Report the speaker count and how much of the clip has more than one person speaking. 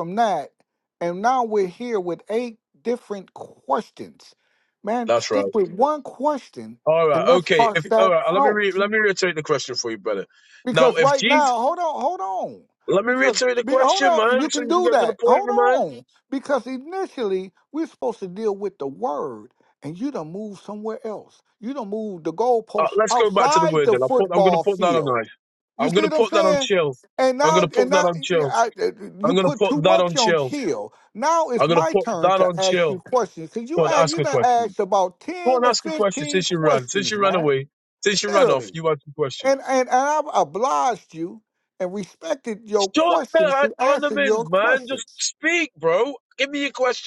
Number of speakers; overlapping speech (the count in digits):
2, about 38%